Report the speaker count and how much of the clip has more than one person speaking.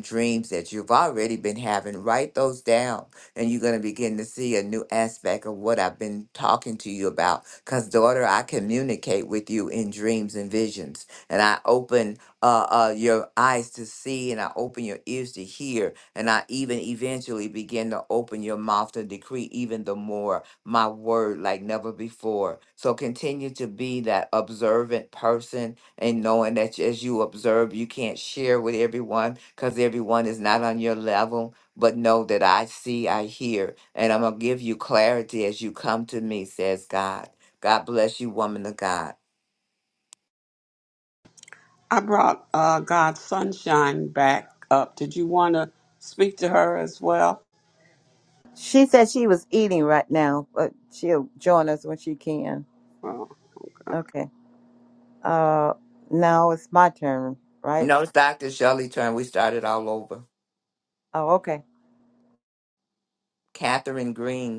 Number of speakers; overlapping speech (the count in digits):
3, under 1%